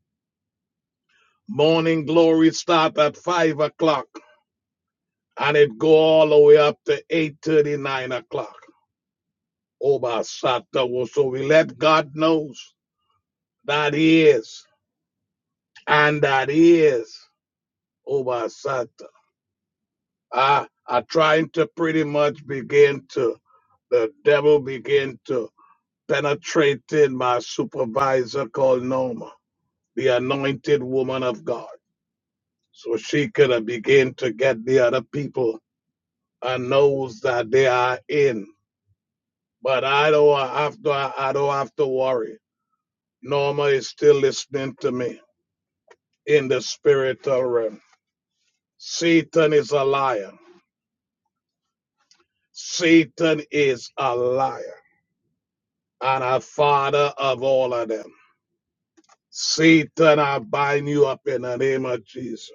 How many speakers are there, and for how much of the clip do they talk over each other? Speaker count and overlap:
one, no overlap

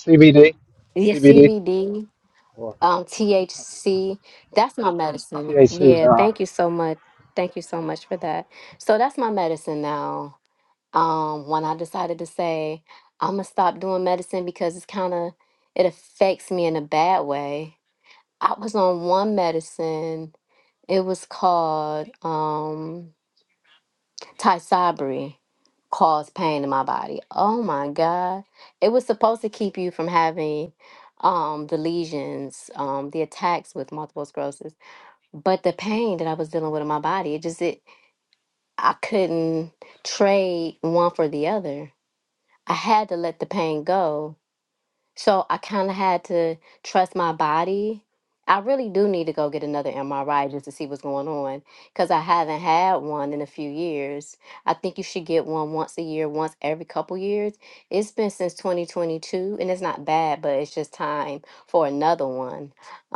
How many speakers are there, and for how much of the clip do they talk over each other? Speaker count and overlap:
two, about 2%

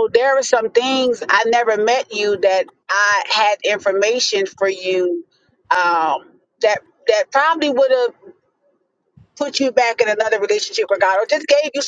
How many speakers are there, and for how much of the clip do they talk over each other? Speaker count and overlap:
one, no overlap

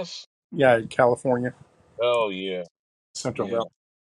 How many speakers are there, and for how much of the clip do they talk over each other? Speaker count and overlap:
two, about 7%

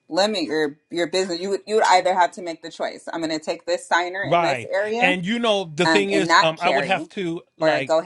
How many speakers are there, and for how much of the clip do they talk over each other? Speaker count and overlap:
two, about 26%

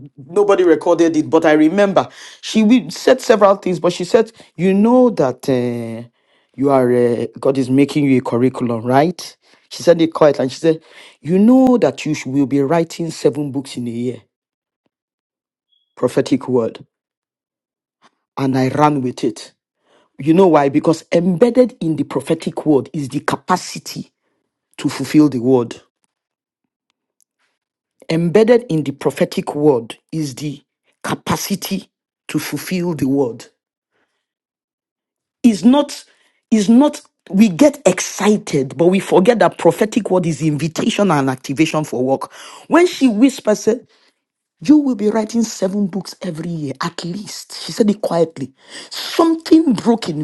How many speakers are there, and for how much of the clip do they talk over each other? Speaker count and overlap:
one, no overlap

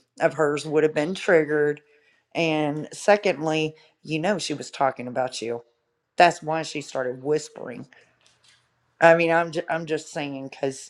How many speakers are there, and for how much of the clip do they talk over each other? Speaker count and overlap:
one, no overlap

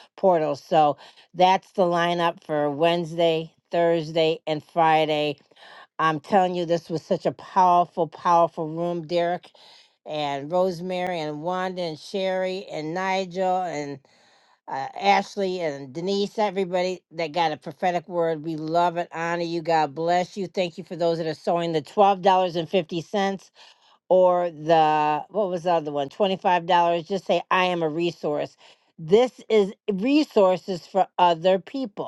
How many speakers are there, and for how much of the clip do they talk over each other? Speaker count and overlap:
one, no overlap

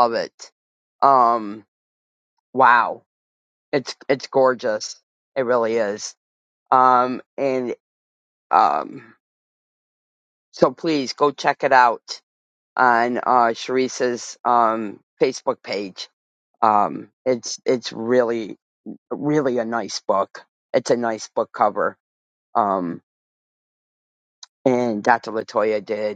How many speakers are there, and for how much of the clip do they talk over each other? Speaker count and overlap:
one, no overlap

